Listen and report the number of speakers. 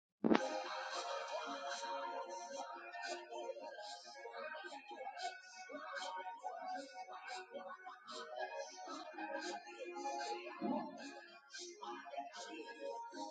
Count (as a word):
zero